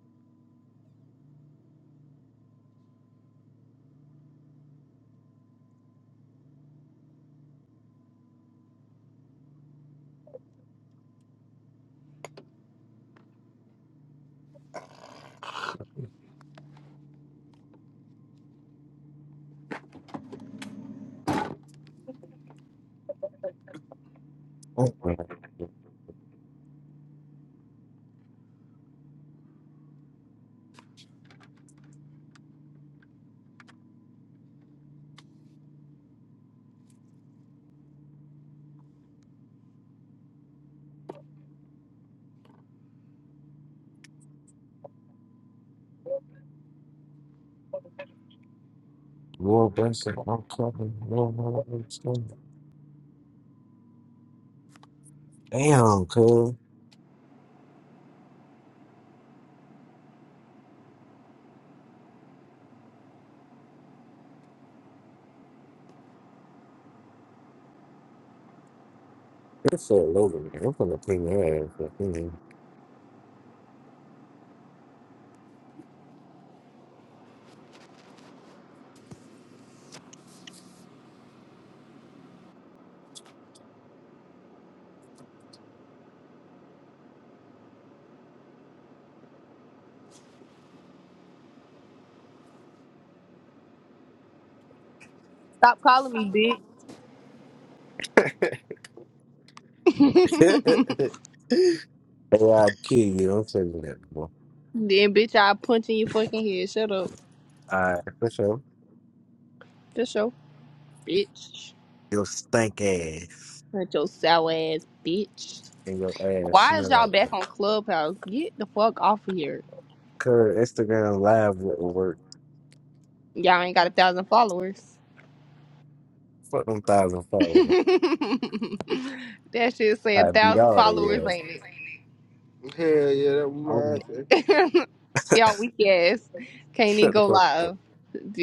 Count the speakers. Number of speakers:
three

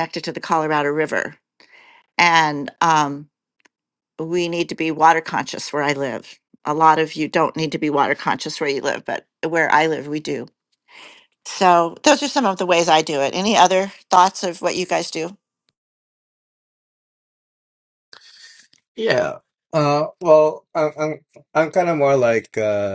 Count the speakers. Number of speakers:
two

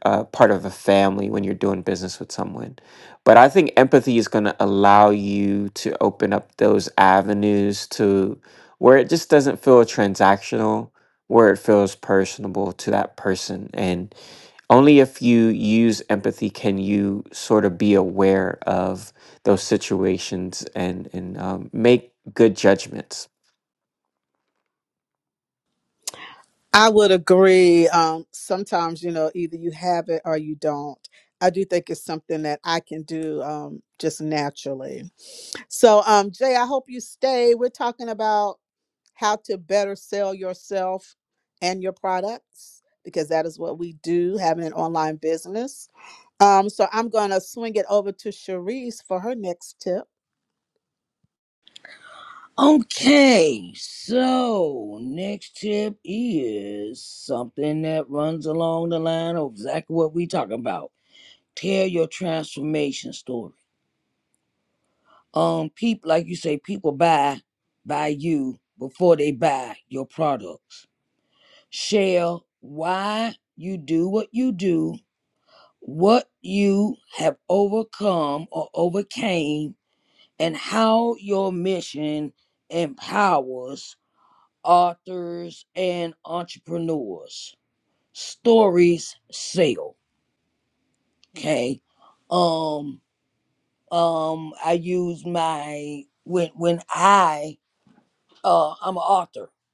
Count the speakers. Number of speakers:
three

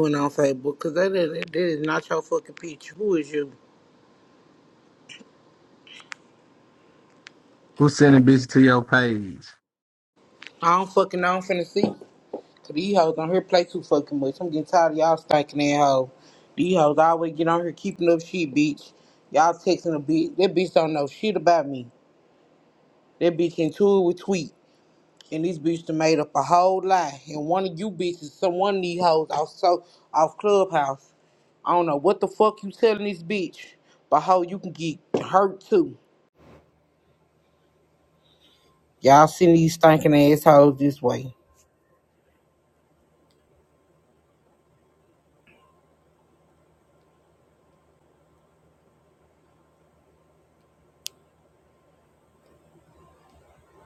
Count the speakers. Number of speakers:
two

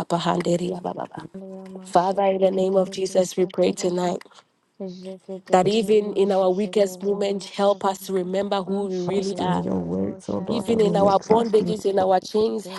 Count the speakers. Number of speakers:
three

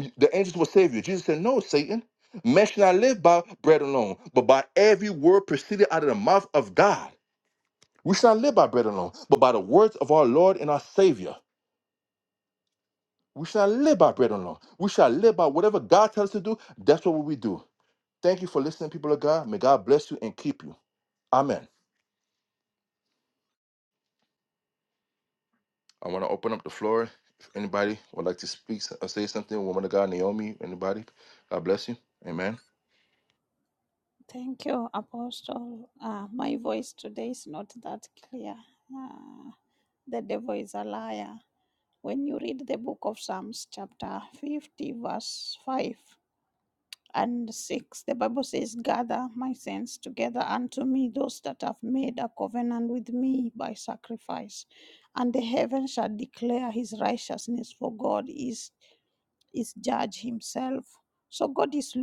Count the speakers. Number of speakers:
two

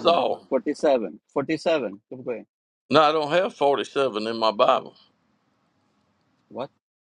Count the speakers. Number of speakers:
two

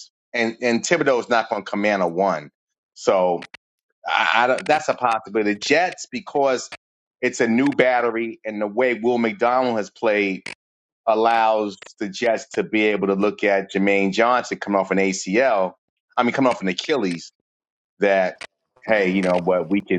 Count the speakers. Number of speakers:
one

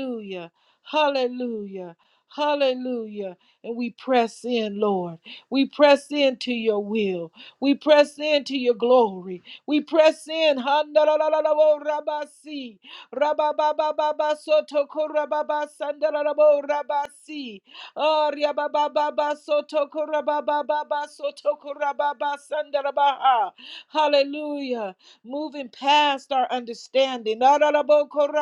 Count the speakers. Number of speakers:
one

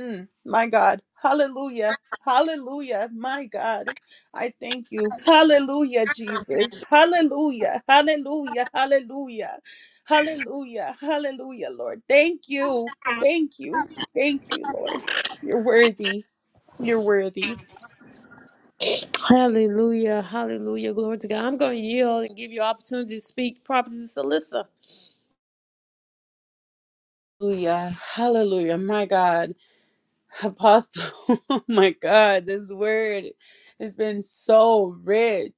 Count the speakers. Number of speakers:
two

